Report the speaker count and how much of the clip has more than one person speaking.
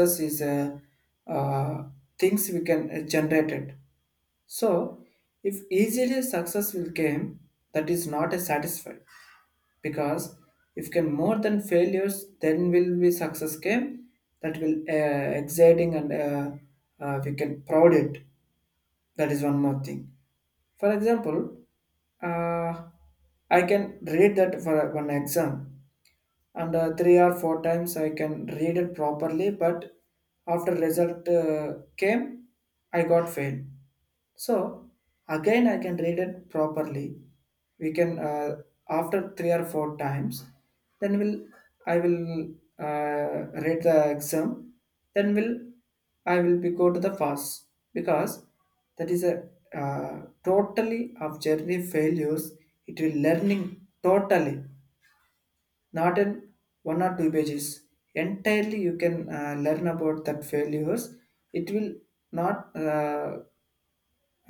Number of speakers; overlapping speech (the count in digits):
1, no overlap